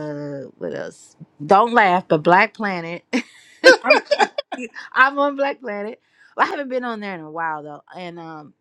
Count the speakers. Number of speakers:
one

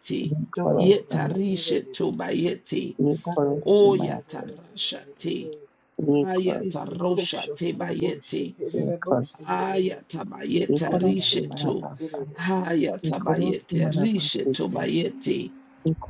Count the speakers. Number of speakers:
three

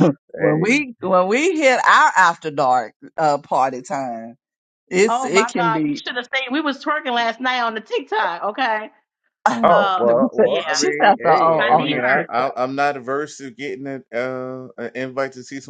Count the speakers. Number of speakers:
three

